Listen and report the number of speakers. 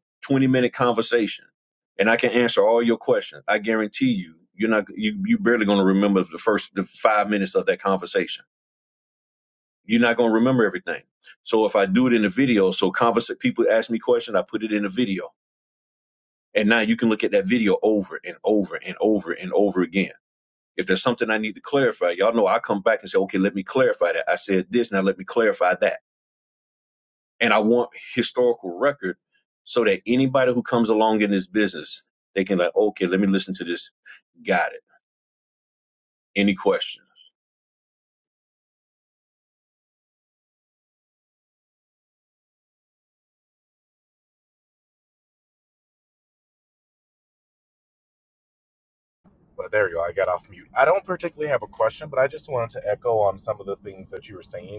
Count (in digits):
2